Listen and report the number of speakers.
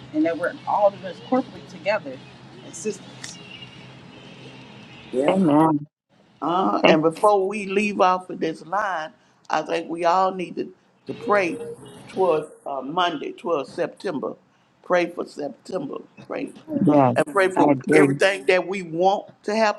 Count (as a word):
three